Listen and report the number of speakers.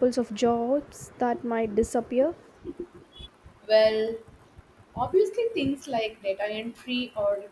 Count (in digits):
2